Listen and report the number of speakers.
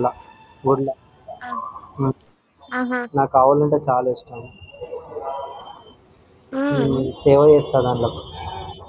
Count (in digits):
2